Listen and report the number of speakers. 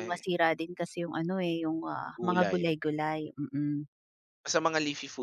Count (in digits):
2